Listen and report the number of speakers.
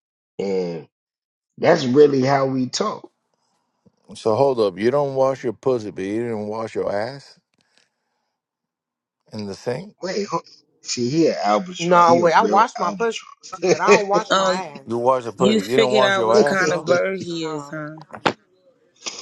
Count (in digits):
4